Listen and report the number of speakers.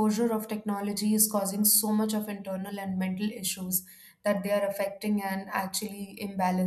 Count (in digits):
1